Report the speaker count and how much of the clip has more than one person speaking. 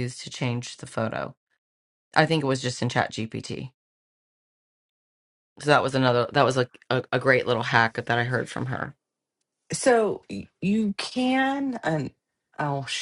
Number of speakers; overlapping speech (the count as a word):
two, no overlap